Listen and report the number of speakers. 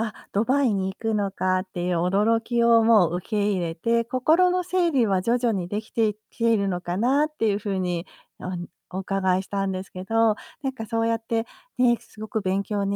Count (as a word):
one